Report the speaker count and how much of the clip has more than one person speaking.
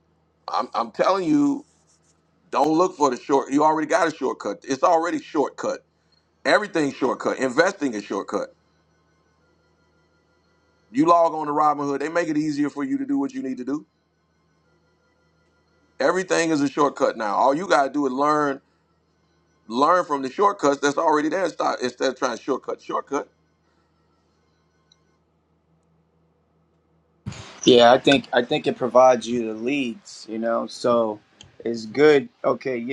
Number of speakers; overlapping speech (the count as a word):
two, no overlap